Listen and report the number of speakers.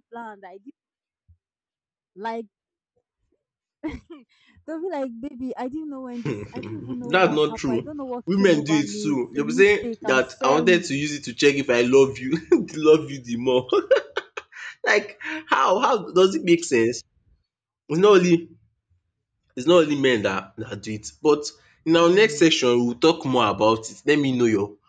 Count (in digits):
2